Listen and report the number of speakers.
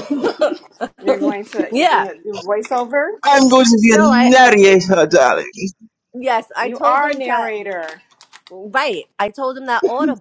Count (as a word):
three